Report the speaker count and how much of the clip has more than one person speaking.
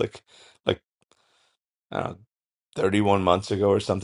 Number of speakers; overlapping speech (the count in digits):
1, no overlap